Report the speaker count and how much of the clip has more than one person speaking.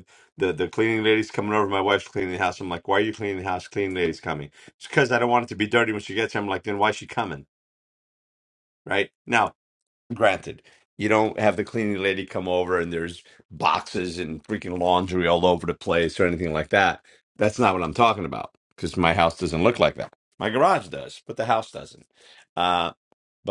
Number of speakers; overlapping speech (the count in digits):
1, no overlap